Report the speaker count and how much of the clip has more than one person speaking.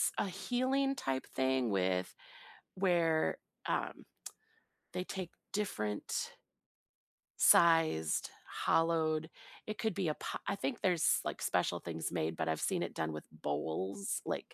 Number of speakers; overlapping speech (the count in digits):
1, no overlap